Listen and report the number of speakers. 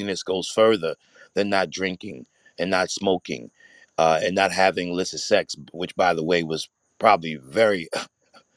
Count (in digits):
1